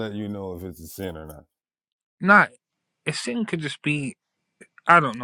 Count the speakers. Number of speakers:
2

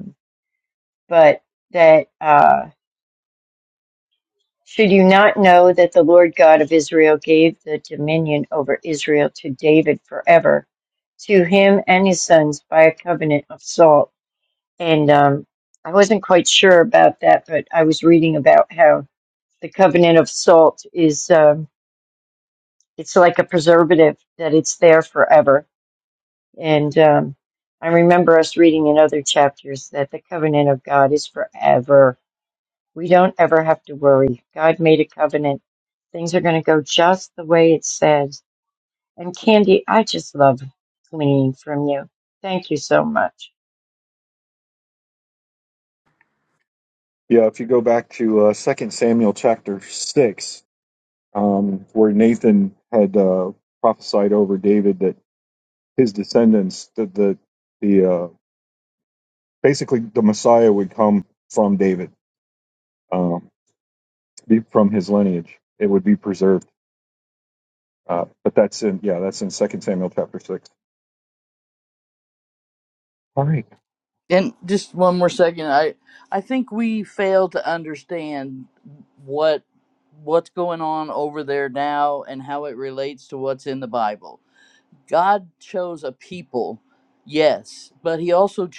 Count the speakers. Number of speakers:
3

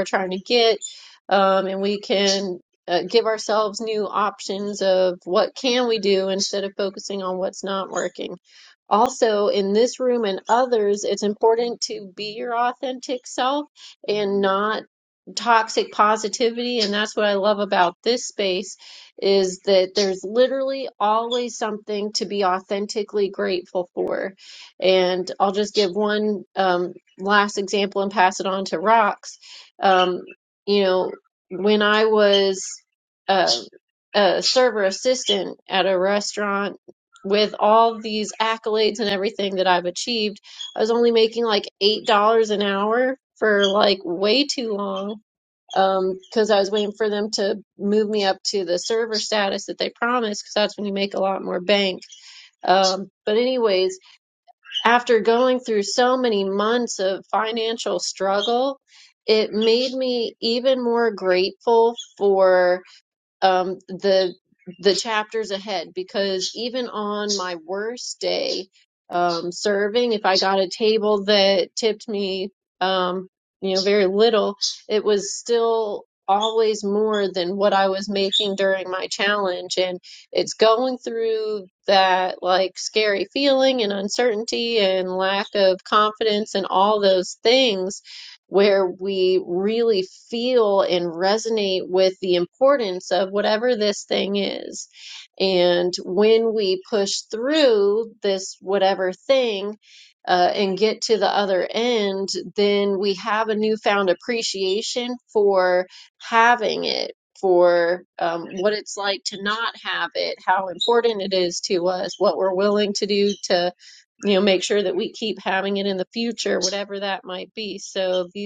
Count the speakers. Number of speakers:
1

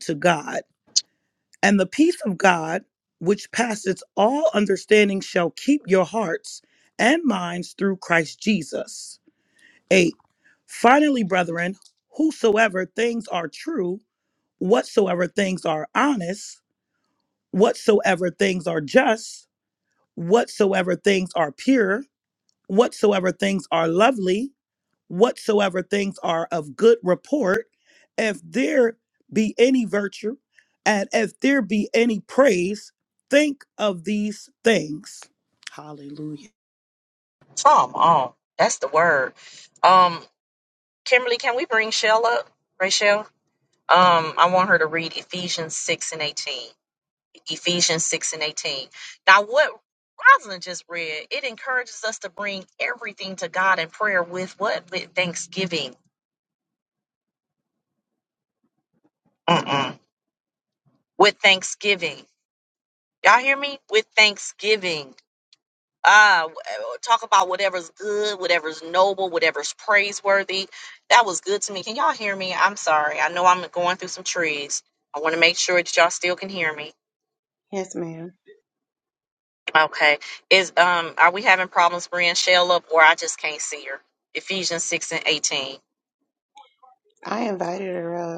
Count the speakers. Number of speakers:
3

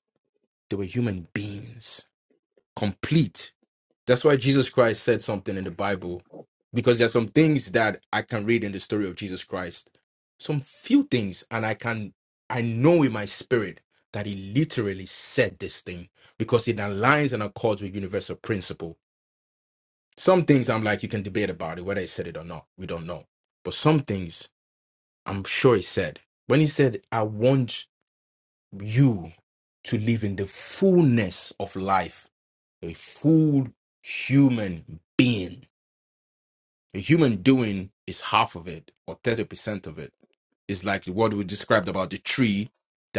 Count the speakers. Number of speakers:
1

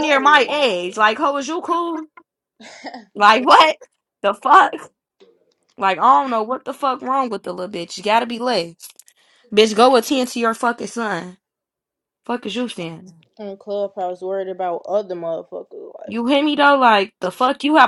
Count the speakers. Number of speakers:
2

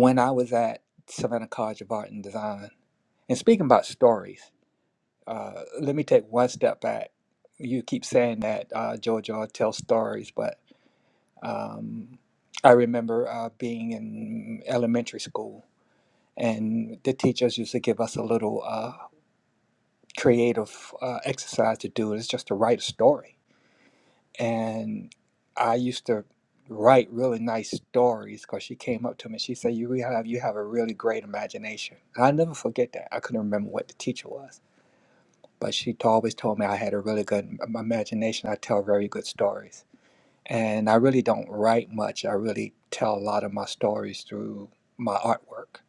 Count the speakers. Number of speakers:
1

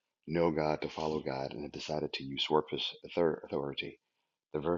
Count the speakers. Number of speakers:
1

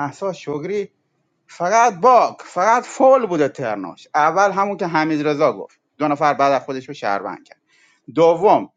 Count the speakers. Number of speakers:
1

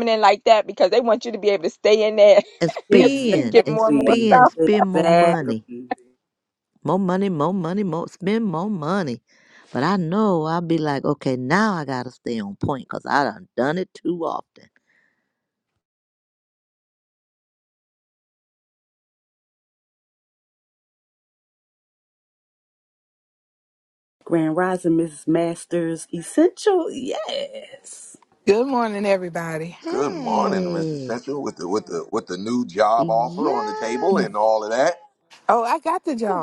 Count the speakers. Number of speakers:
5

